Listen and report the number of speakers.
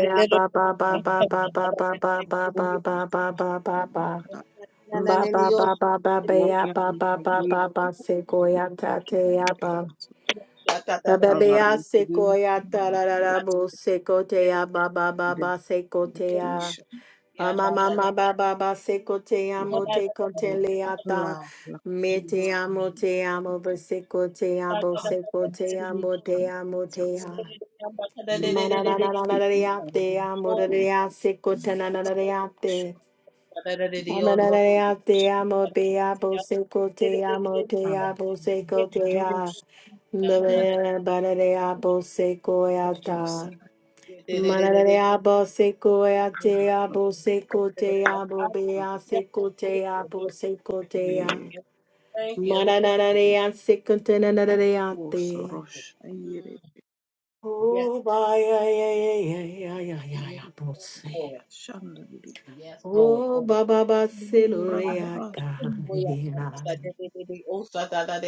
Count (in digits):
3